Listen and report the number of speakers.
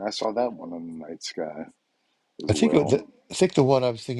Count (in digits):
2